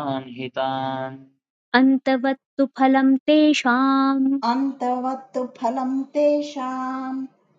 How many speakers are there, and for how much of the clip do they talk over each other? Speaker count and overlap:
3, no overlap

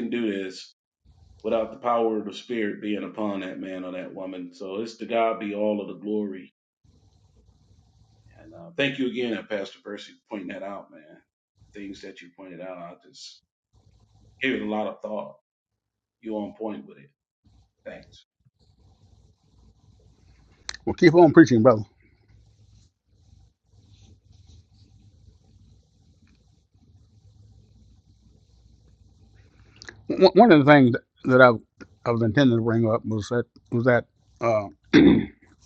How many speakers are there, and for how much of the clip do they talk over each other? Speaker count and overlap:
2, no overlap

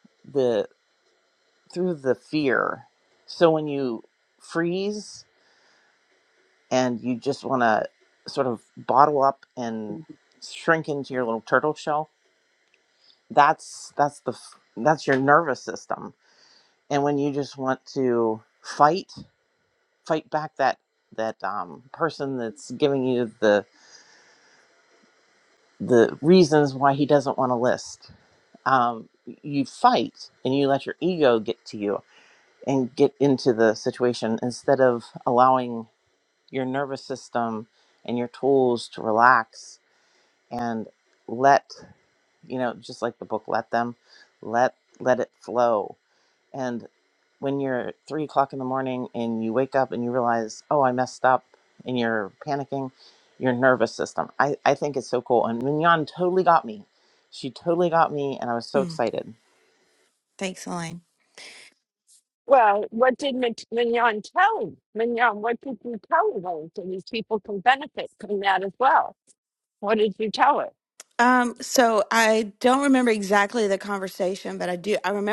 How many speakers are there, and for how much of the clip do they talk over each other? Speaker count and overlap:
3, under 1%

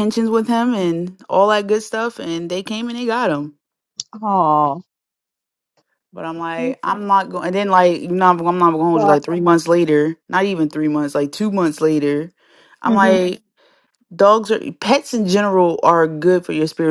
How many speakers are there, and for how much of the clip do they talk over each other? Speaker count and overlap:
2, about 3%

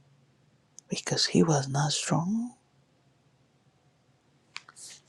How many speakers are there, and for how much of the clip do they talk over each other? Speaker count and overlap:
1, no overlap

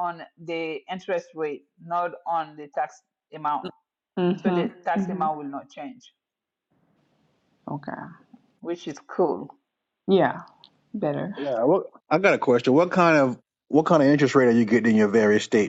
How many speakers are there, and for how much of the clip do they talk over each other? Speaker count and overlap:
3, about 5%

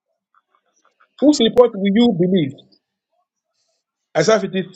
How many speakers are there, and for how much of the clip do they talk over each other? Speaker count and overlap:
1, no overlap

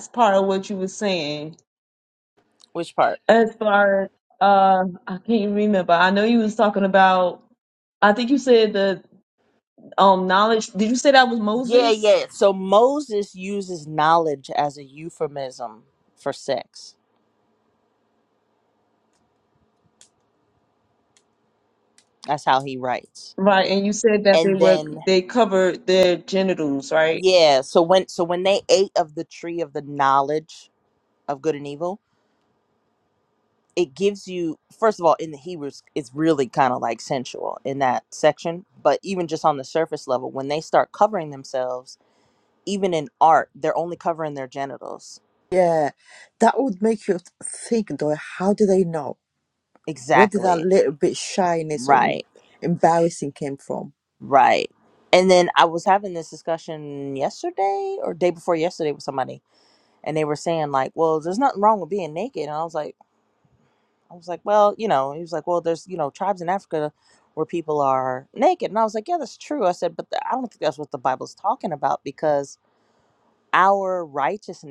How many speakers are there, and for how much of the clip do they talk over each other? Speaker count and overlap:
3, about 3%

